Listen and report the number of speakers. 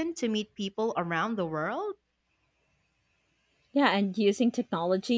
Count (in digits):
2